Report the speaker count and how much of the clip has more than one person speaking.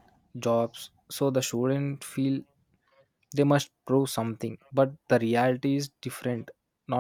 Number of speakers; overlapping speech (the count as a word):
one, no overlap